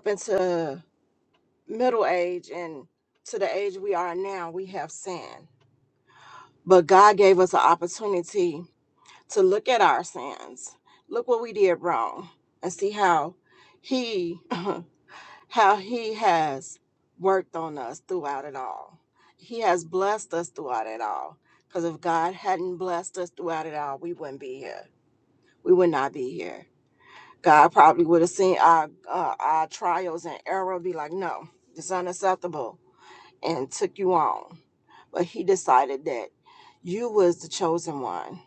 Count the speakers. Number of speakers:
one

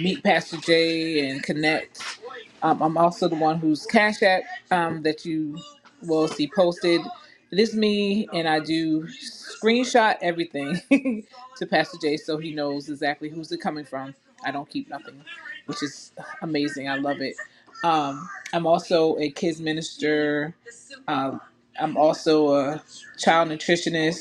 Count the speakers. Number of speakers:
one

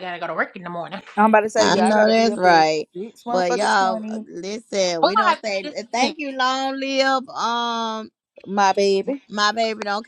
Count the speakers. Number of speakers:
three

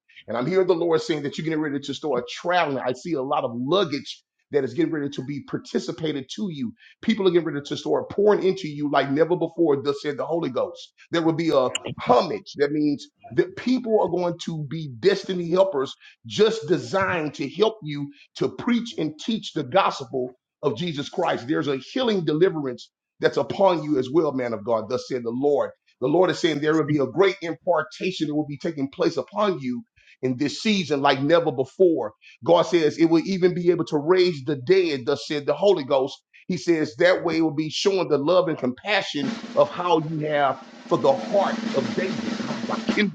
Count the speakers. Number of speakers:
one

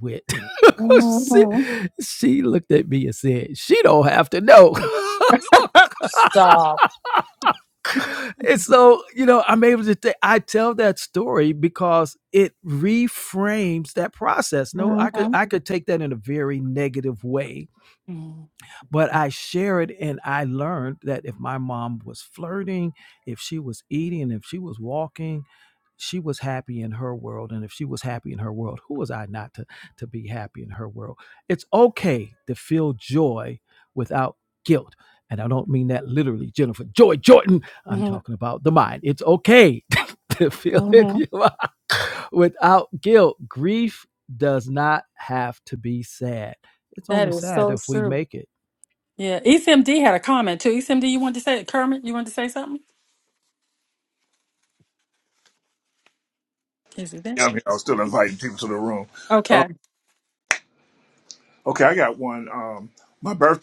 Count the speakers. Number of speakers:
three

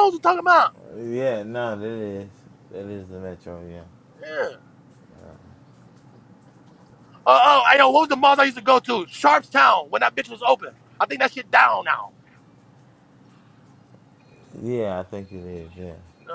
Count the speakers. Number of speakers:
two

